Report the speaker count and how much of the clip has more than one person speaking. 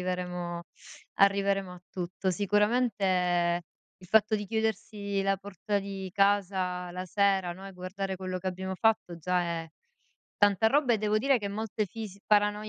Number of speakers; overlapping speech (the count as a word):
one, no overlap